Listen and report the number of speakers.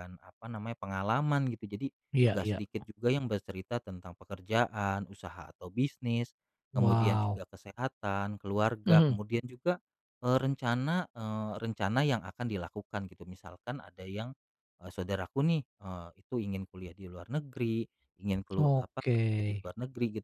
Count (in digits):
2